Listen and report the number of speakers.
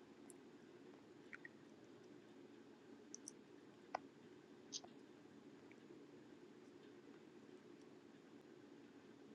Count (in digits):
0